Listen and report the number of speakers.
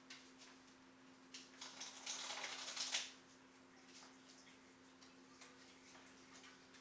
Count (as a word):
zero